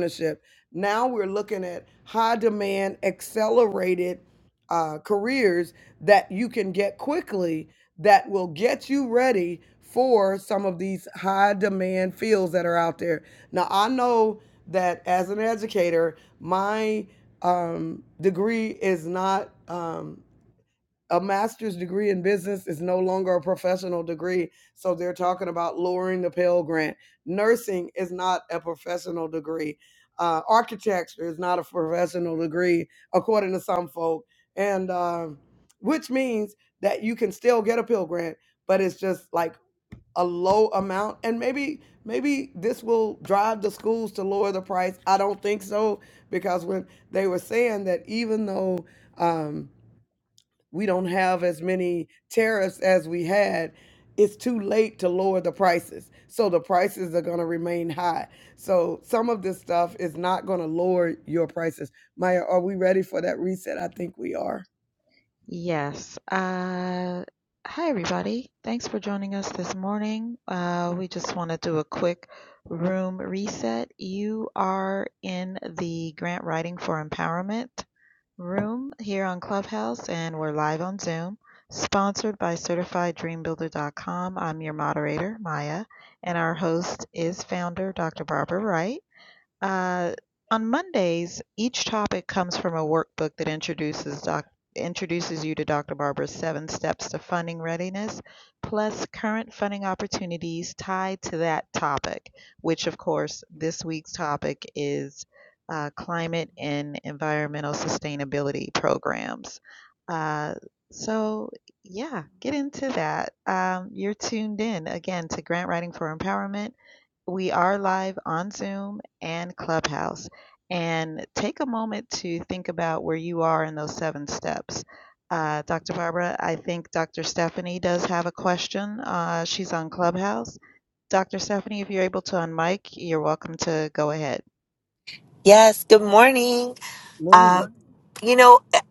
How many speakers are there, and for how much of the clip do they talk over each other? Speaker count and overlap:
3, under 1%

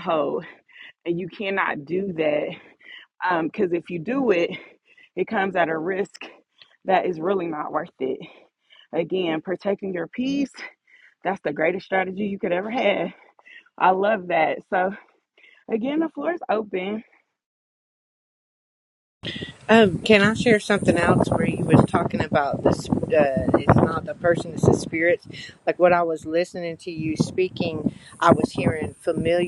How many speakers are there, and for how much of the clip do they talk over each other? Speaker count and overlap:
2, no overlap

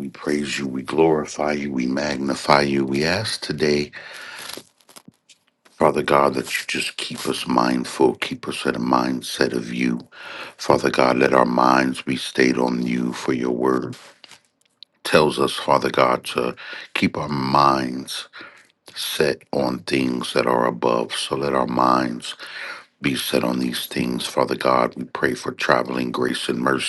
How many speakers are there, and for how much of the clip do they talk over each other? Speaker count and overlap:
1, no overlap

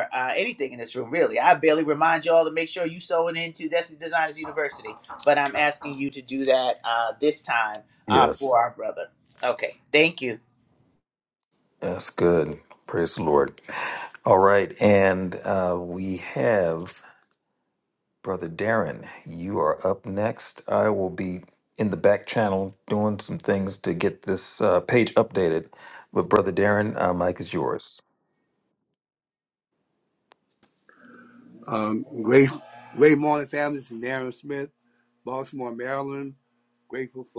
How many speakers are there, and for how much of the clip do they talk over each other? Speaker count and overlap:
3, about 1%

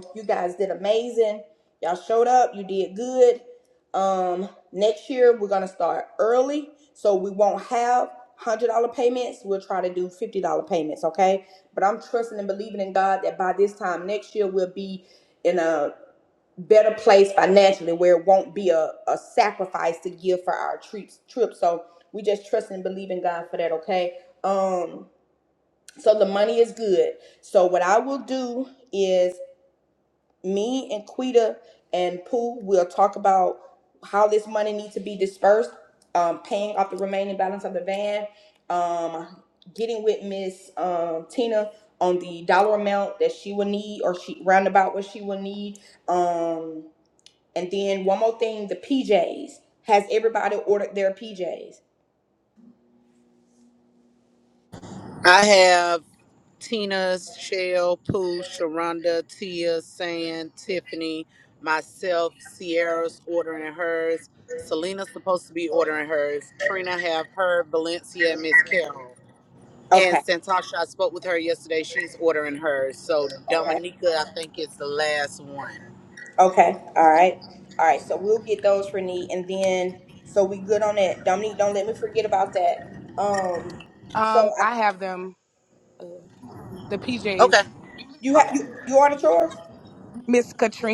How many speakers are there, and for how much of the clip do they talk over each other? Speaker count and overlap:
3, about 1%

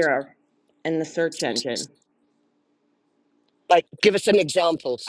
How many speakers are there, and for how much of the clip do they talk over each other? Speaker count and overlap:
2, about 1%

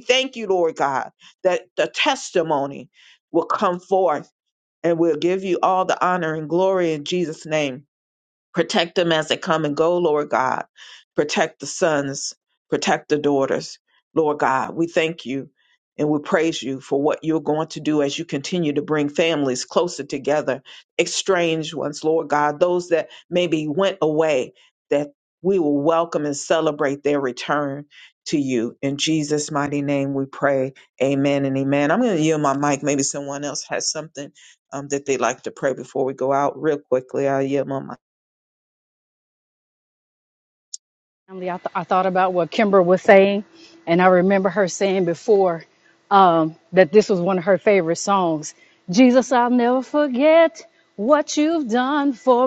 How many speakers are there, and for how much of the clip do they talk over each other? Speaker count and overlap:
2, no overlap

